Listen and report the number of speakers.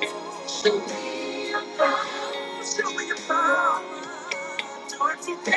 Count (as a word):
one